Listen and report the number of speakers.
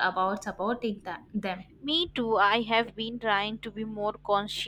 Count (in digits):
2